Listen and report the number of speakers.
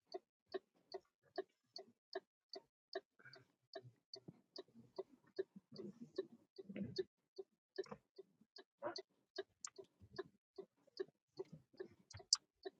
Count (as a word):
zero